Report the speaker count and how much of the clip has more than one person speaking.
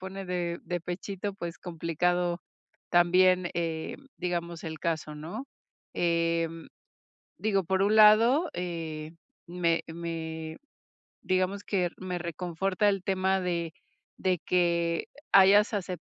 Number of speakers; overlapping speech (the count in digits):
1, no overlap